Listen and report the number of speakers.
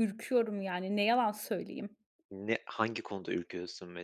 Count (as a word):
two